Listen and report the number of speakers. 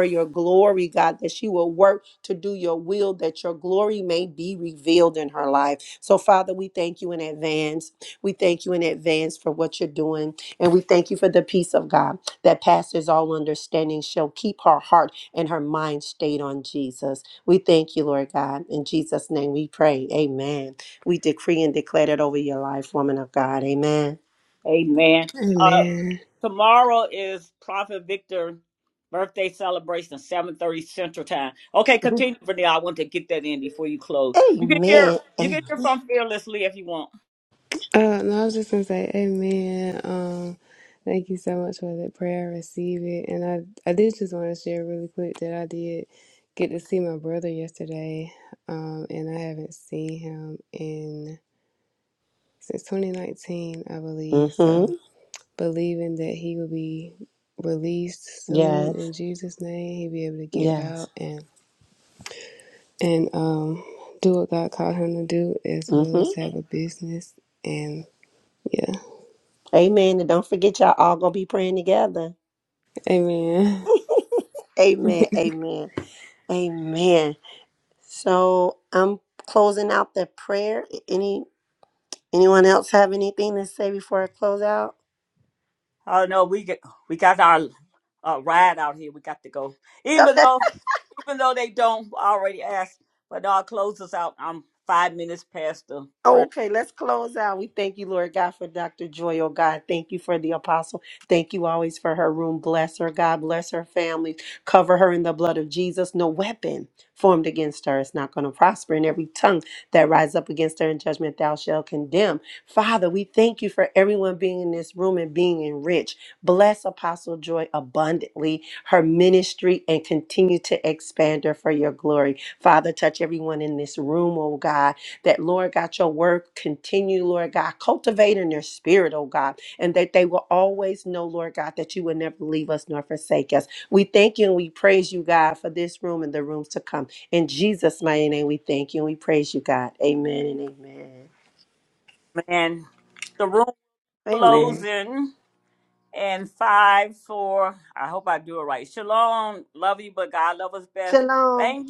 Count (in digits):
3